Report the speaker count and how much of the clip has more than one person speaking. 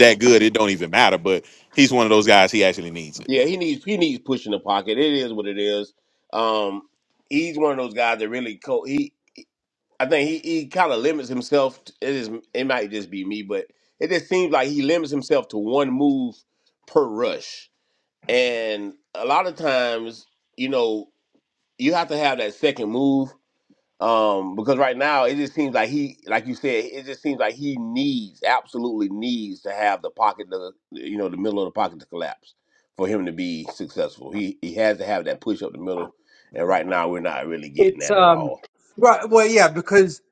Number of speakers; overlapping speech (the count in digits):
3, about 2%